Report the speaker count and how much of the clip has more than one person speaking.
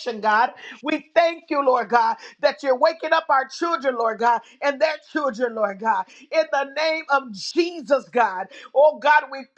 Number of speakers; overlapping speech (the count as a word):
one, no overlap